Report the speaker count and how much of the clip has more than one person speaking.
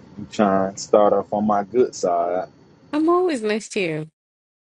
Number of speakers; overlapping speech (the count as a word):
two, no overlap